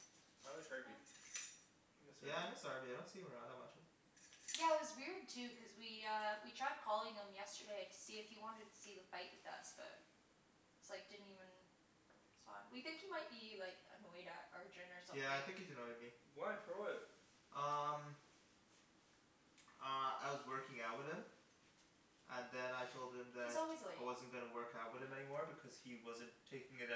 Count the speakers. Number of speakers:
three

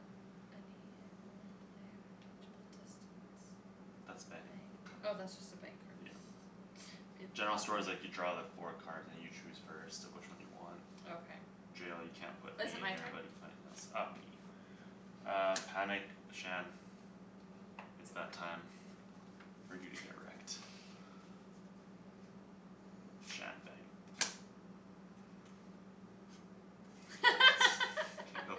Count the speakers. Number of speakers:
two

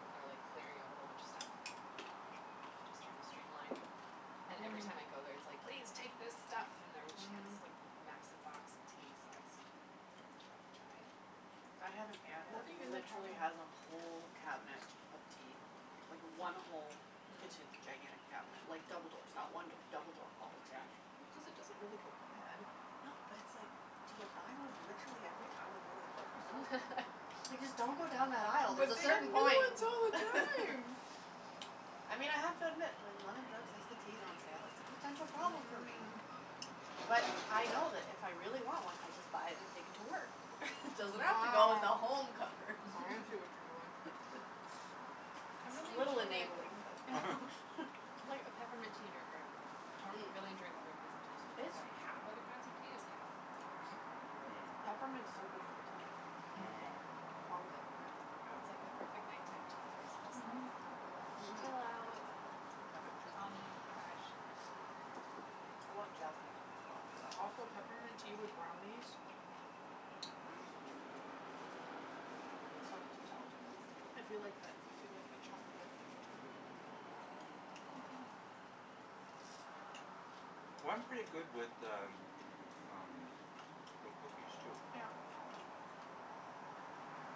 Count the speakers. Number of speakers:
four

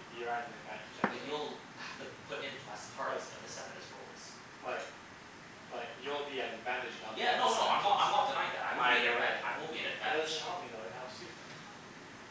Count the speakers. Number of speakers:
two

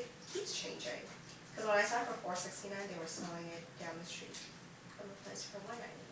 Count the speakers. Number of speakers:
one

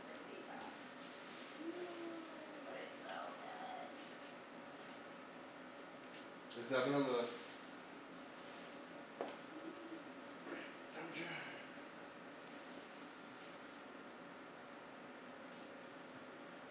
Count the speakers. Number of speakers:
two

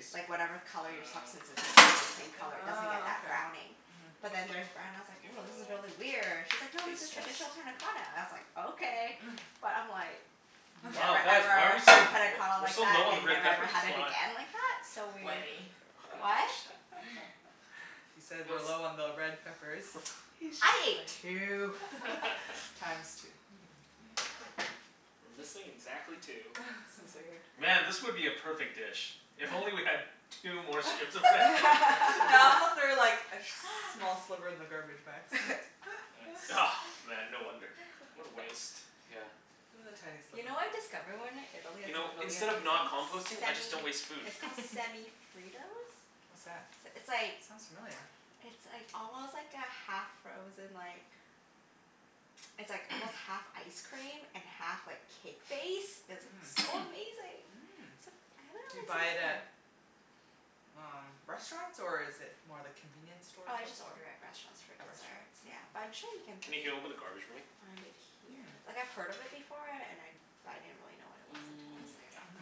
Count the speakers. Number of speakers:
four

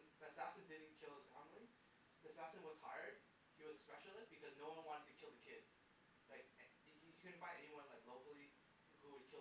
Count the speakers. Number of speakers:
one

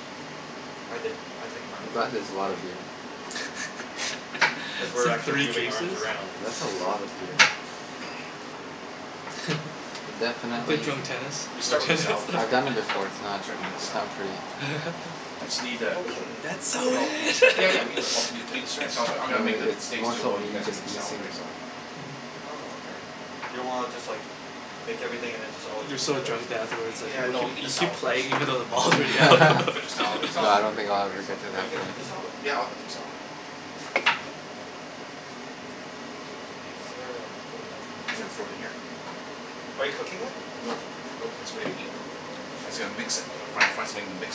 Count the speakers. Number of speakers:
four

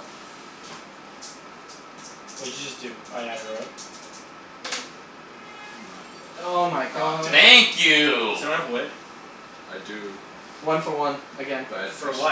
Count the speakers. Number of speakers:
four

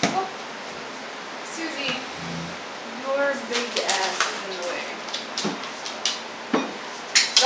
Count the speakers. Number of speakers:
one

